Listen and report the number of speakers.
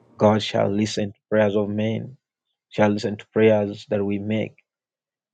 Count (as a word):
one